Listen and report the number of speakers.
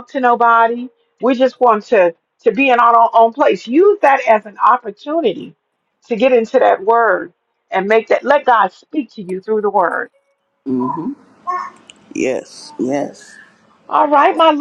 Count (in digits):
2